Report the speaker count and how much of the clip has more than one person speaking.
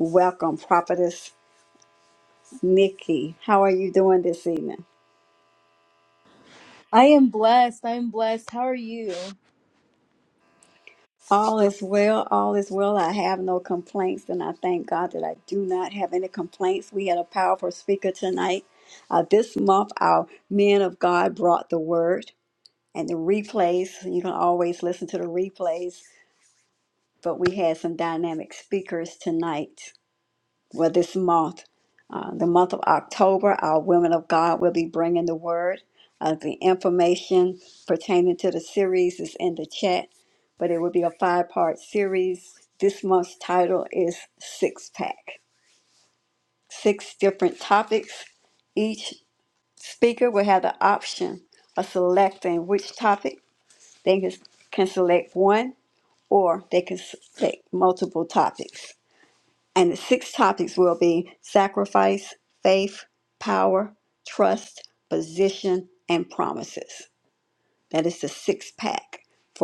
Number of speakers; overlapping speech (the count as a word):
two, no overlap